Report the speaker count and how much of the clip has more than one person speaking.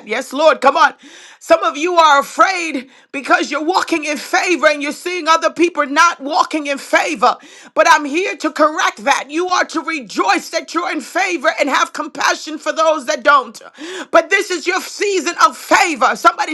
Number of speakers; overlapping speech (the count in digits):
1, no overlap